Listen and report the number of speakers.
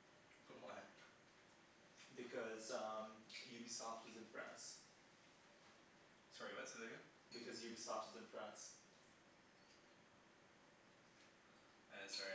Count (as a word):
two